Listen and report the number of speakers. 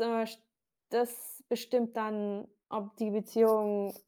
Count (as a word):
one